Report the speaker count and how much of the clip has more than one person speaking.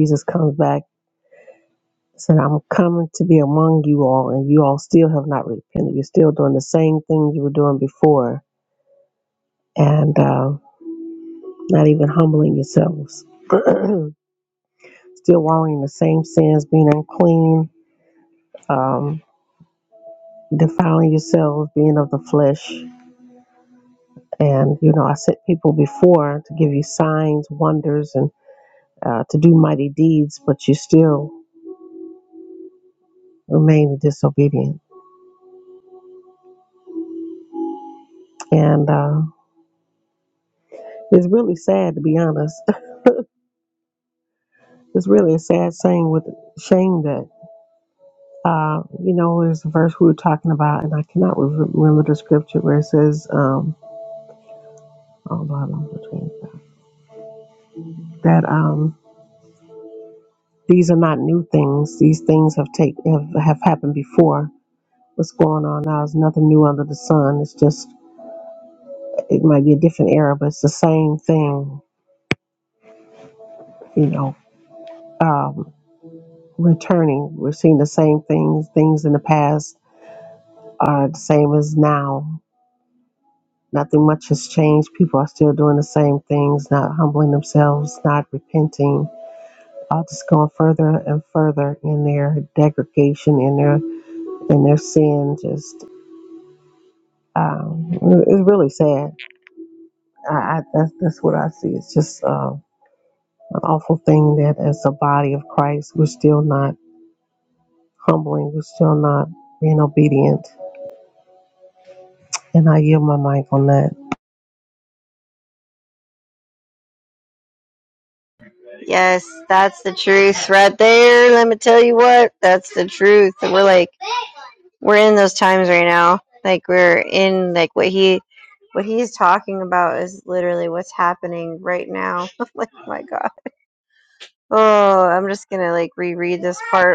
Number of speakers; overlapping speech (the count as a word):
two, no overlap